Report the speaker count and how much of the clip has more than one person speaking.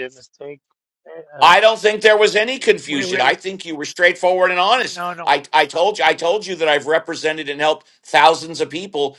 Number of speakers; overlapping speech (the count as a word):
two, about 14%